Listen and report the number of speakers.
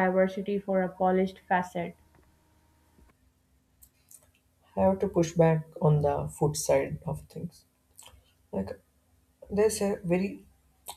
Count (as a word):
two